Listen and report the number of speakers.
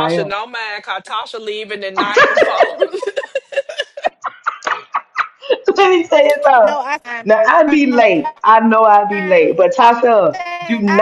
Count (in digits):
3